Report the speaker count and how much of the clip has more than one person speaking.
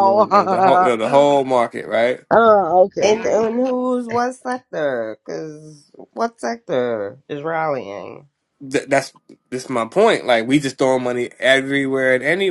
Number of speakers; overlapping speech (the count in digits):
3, about 8%